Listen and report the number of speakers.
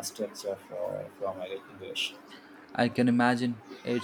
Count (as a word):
two